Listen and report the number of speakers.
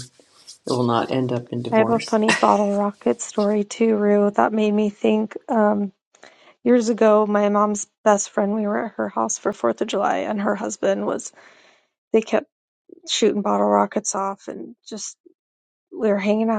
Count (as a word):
two